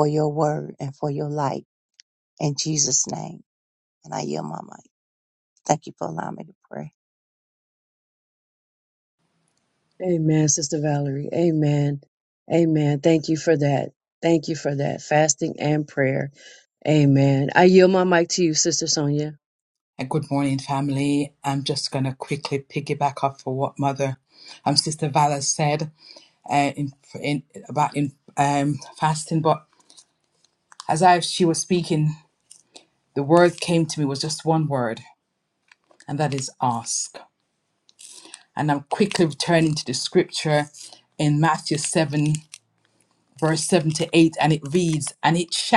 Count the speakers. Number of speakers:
3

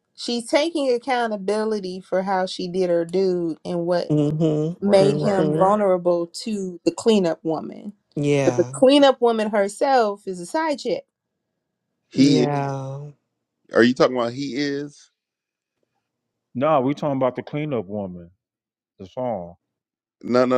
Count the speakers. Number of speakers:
4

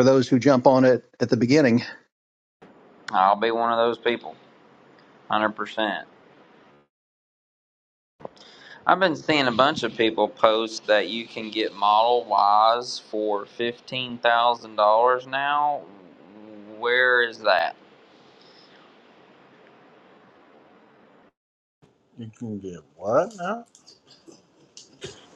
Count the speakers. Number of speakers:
3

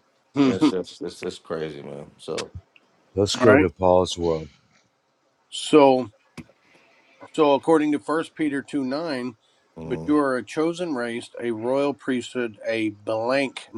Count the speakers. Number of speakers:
3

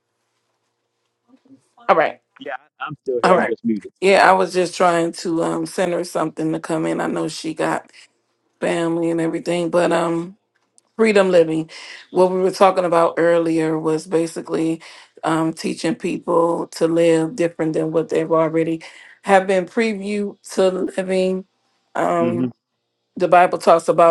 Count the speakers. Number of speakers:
2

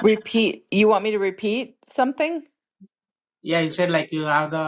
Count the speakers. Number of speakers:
2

